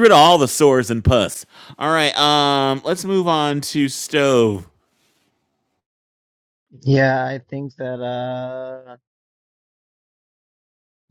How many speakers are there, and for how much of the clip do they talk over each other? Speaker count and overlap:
two, no overlap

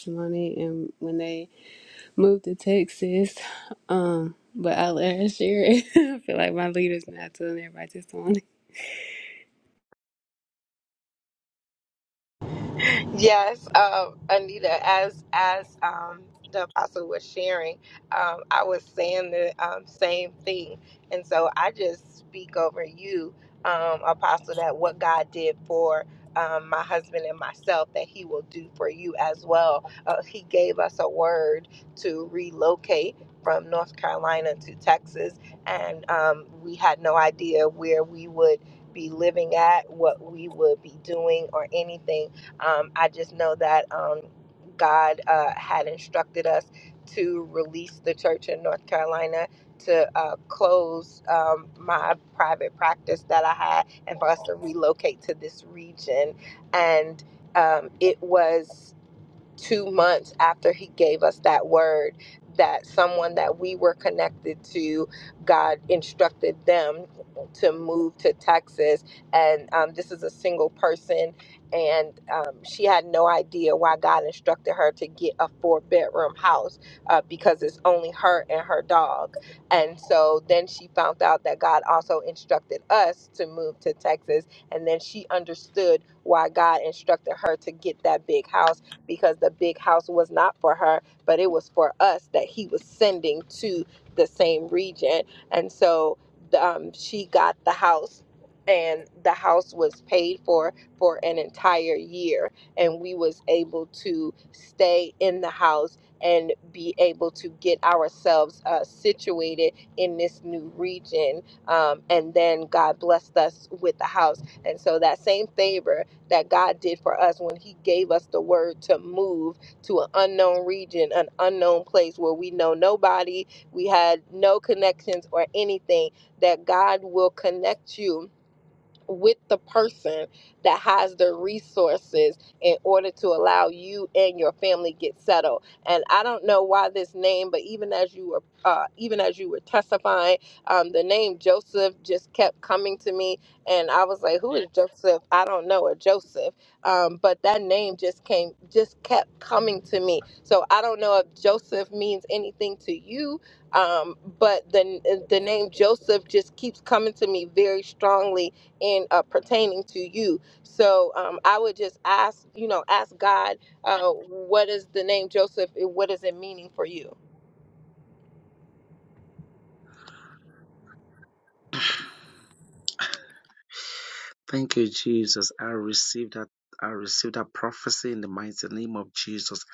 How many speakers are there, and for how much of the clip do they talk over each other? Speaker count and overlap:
three, no overlap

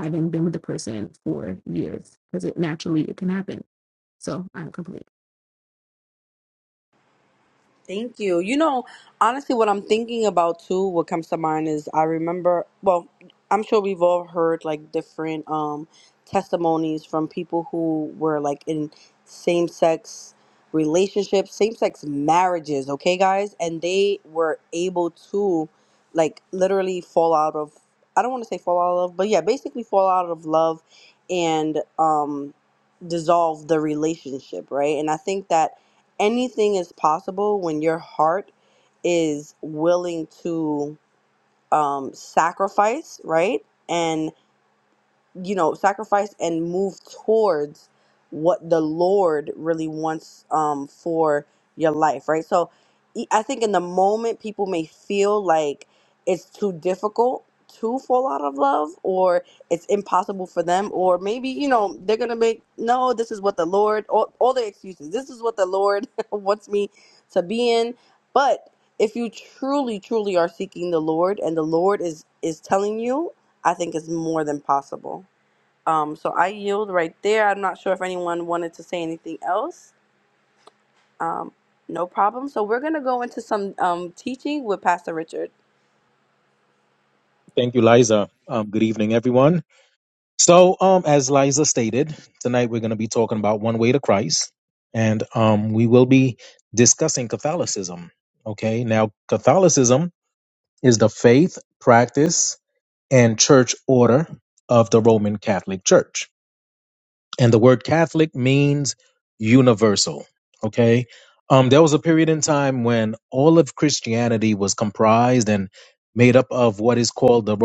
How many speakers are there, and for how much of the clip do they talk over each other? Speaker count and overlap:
three, no overlap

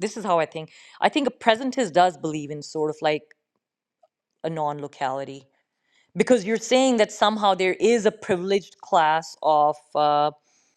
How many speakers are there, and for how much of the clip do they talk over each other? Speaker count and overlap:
one, no overlap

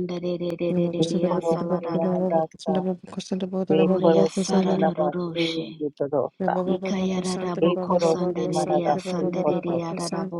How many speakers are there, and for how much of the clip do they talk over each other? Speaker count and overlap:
three, about 69%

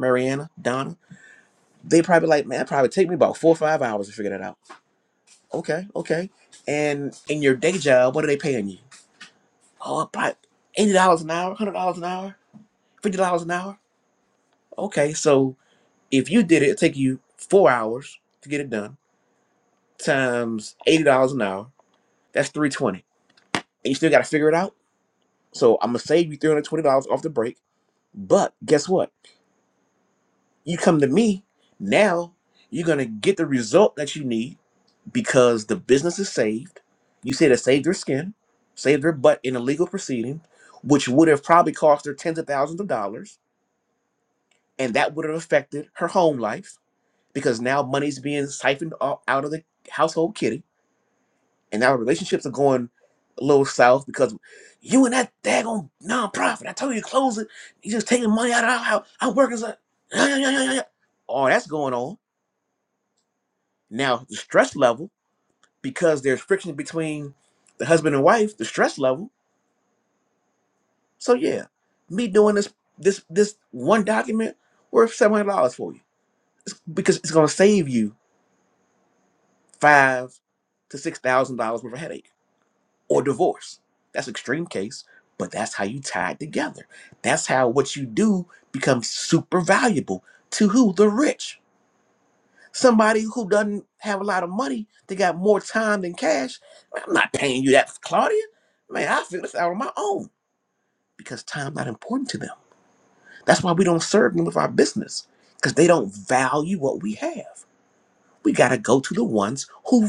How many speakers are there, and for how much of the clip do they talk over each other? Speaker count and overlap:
one, no overlap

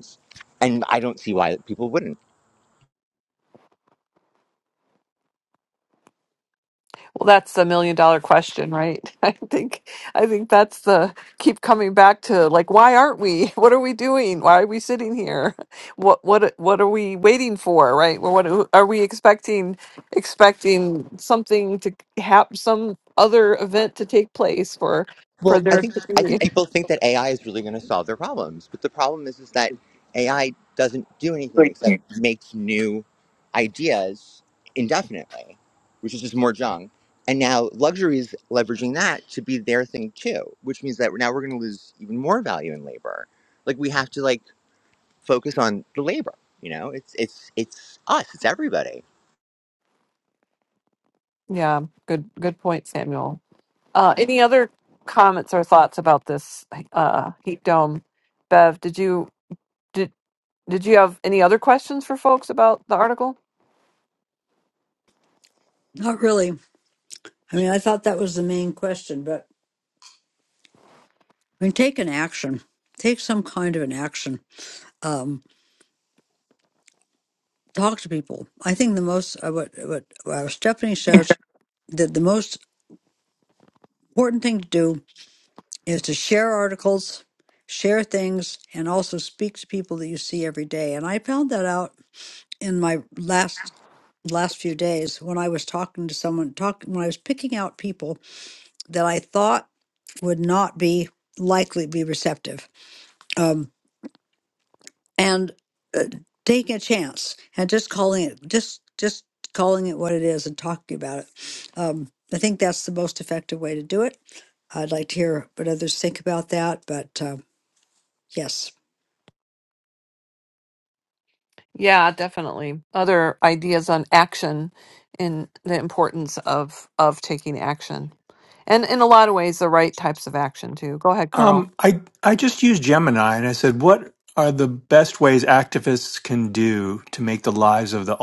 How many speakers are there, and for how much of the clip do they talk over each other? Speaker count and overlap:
four, about 1%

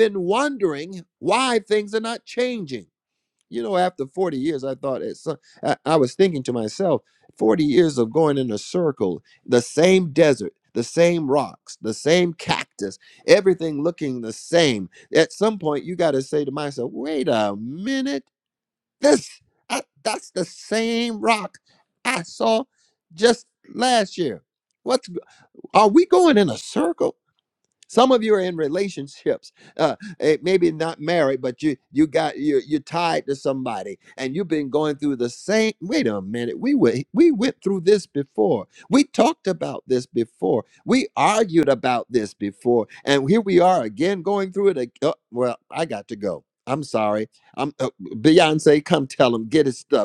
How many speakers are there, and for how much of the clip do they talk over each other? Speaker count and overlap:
one, no overlap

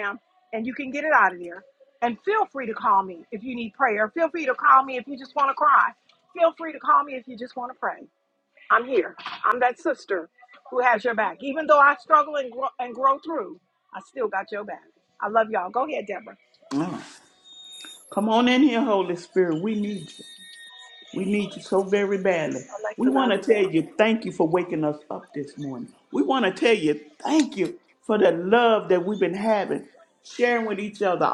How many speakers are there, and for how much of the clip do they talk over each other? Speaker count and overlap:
two, no overlap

